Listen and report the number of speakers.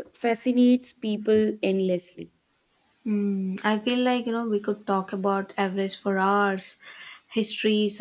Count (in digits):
2